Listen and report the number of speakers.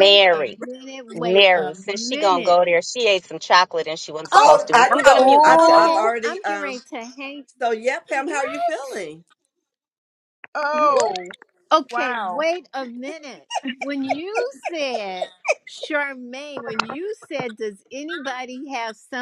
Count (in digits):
4